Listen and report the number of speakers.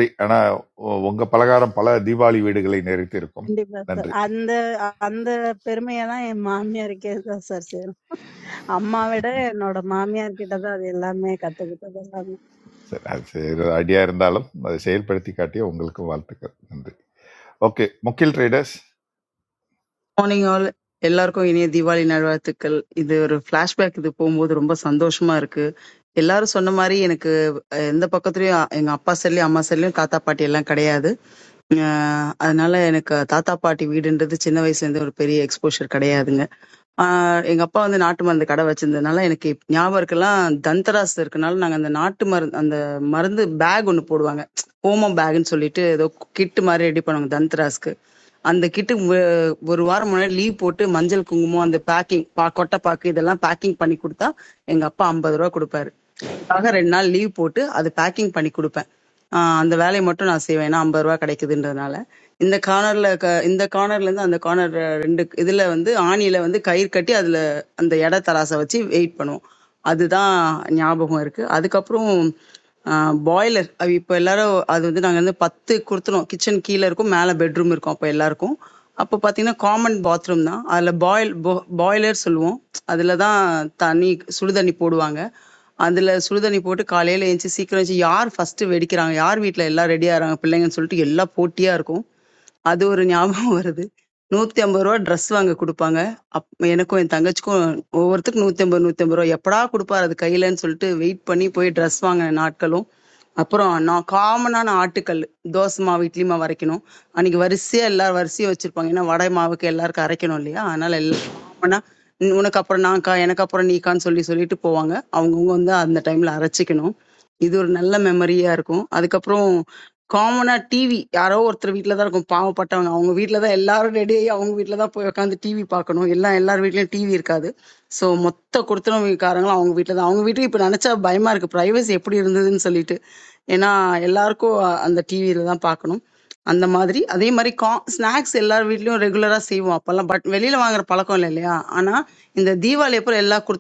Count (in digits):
3